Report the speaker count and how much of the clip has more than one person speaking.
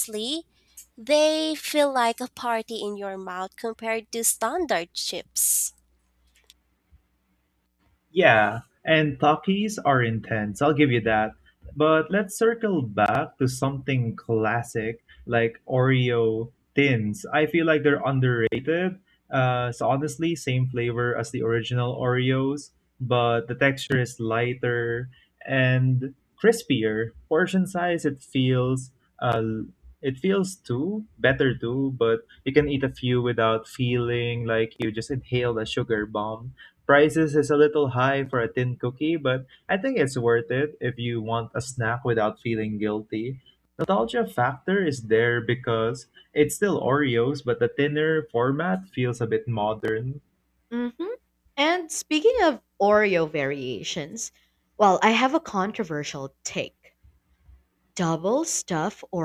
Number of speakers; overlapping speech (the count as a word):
three, no overlap